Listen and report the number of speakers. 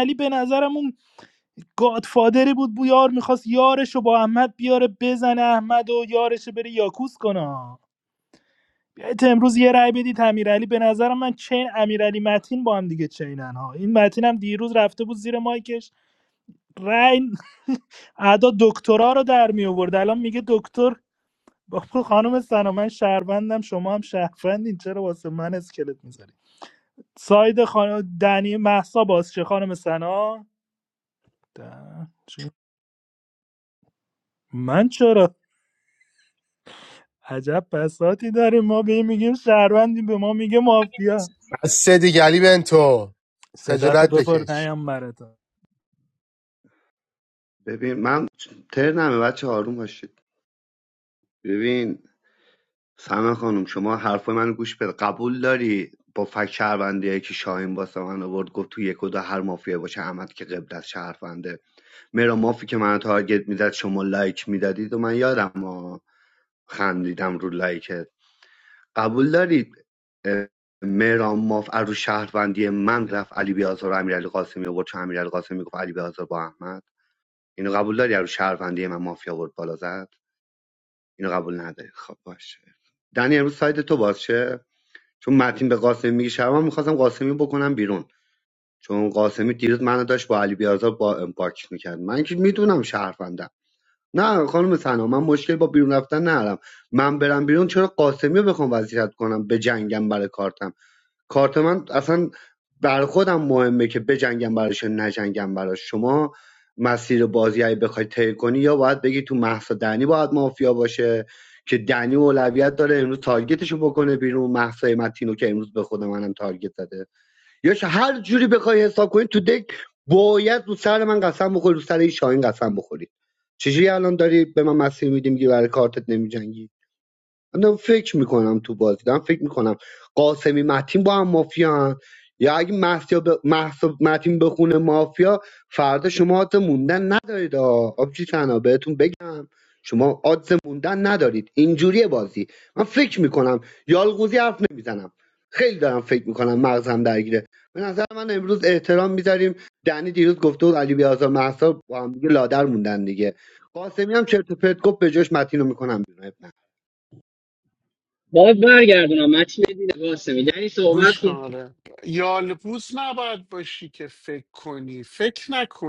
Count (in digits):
5